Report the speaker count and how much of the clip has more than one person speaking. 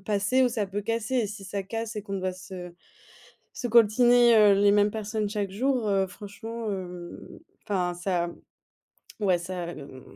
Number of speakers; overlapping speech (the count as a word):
one, no overlap